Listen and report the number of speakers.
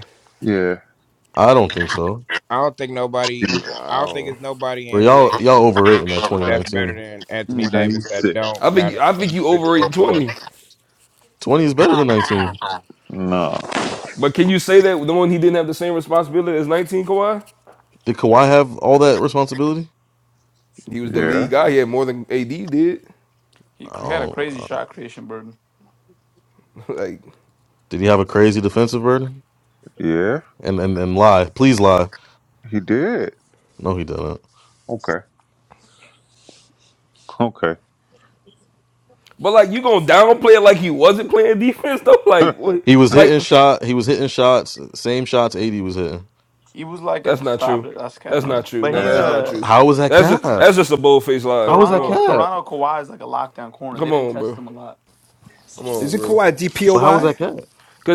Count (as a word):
six